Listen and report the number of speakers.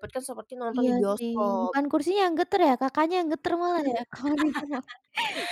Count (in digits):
2